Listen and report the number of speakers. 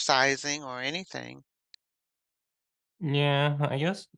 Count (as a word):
two